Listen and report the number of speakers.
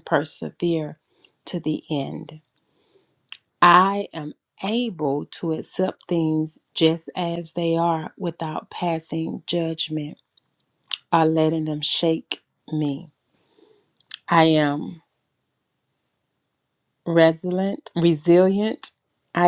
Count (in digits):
1